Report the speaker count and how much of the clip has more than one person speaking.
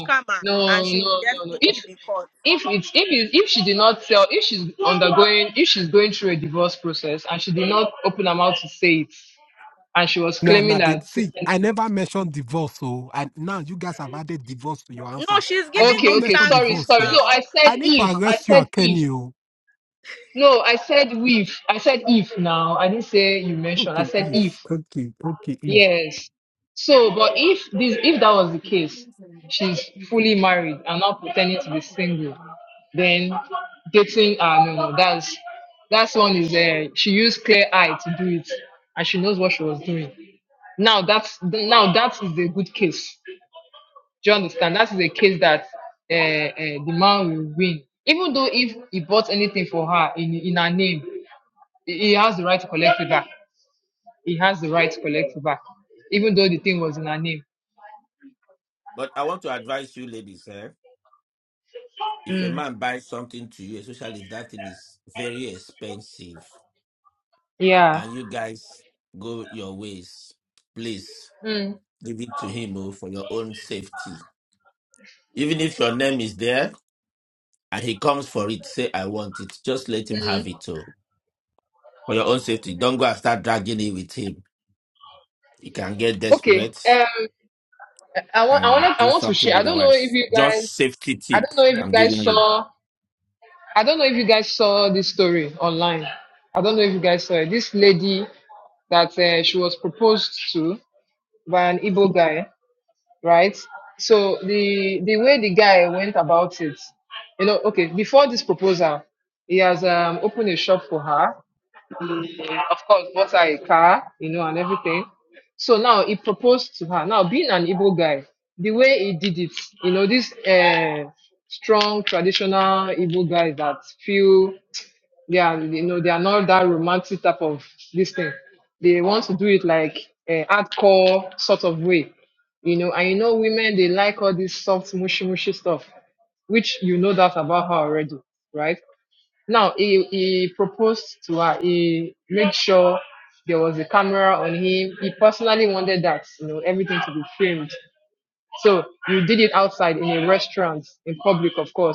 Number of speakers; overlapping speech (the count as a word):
four, about 7%